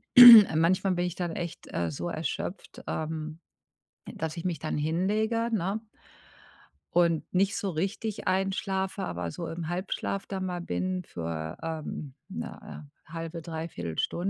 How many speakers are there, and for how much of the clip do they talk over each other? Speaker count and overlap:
one, no overlap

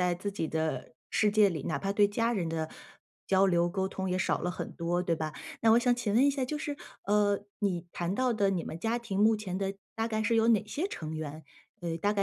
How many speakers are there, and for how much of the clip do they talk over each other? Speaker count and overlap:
one, no overlap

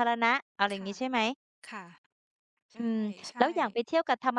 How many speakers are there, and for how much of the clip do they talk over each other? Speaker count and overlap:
two, about 19%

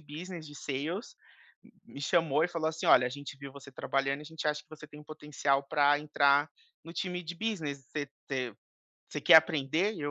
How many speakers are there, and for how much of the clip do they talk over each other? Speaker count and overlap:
one, no overlap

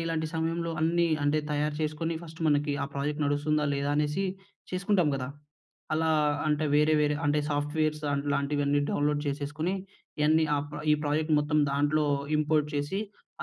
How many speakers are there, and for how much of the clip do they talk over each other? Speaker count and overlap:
one, no overlap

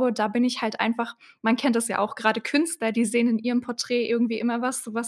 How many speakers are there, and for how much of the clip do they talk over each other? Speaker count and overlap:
one, no overlap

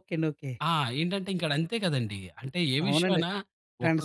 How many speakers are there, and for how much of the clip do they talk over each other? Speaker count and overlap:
two, about 16%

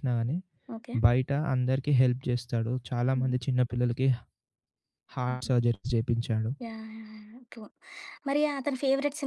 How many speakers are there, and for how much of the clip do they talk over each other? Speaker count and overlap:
two, about 6%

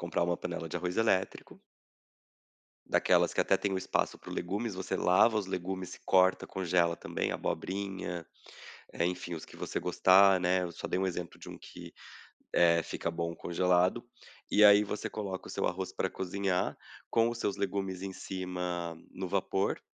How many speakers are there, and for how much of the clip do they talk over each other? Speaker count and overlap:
one, no overlap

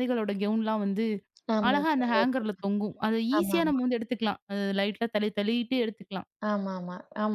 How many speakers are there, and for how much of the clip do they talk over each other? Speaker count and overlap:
two, about 9%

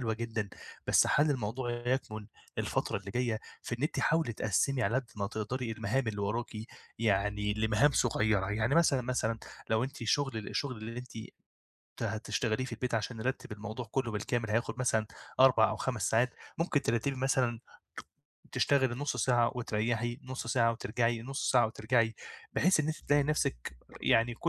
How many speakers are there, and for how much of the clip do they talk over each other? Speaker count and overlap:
one, no overlap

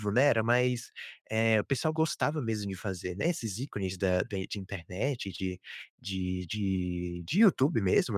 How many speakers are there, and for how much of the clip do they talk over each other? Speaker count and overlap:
one, no overlap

